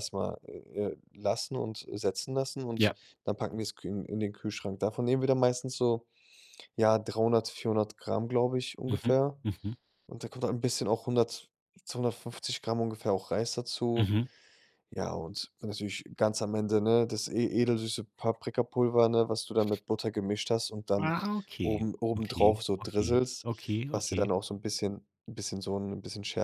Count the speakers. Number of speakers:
two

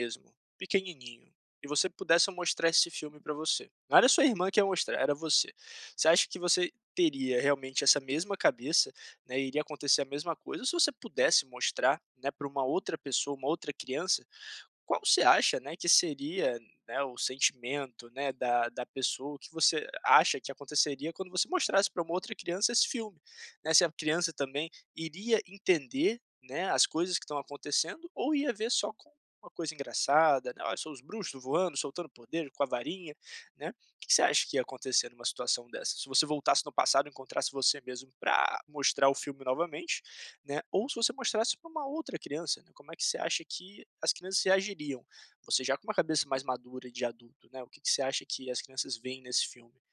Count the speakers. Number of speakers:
one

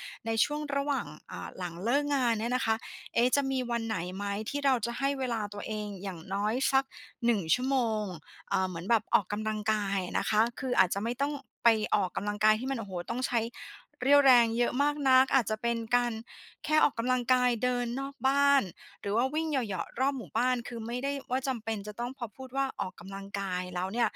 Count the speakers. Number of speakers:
one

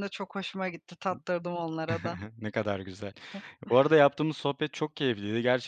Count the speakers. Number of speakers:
two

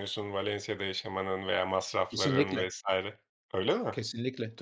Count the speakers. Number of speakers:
two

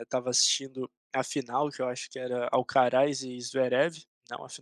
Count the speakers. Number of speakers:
one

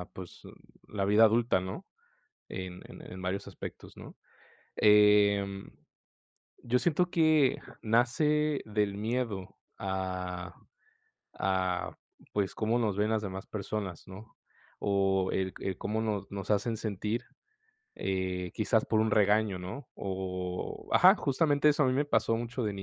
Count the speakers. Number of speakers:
one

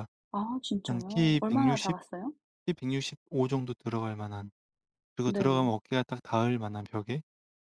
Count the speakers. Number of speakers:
two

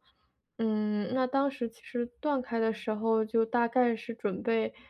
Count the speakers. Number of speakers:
one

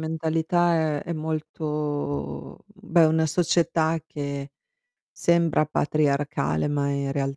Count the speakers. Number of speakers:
one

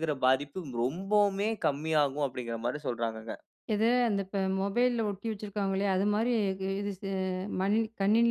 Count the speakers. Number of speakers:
two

